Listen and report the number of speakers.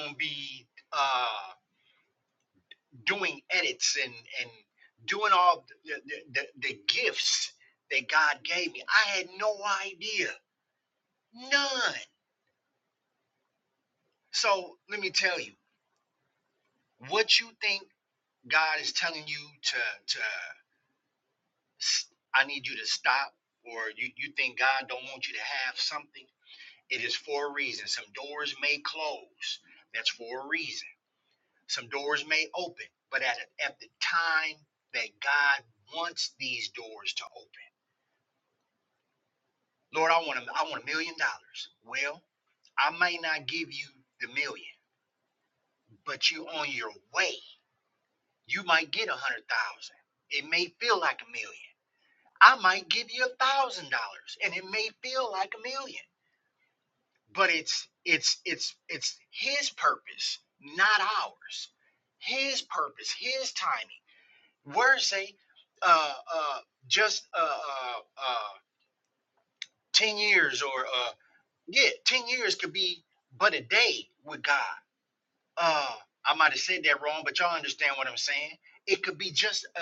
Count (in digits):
1